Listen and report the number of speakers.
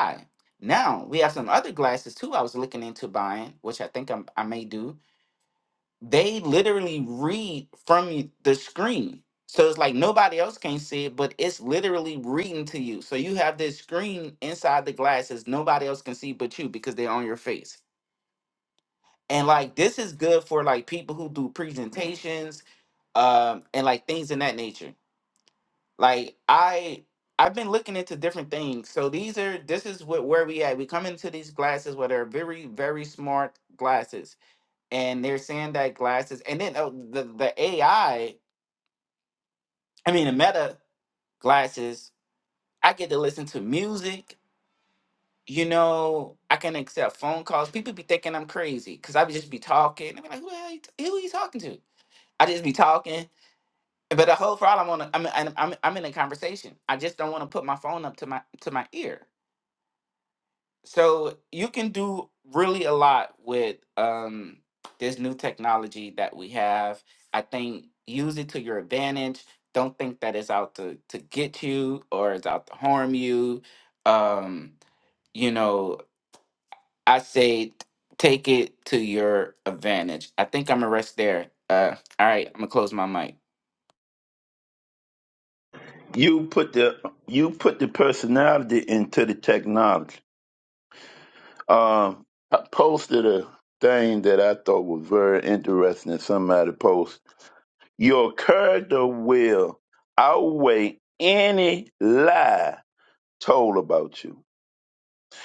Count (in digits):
2